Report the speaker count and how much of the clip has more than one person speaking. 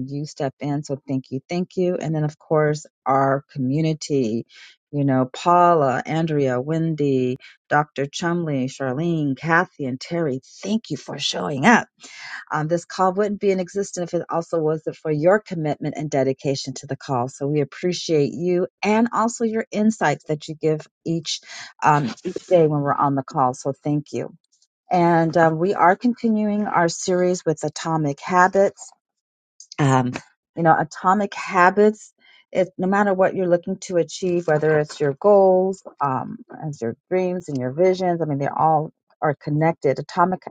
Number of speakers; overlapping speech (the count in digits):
1, no overlap